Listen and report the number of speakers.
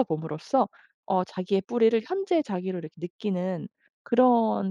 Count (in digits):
1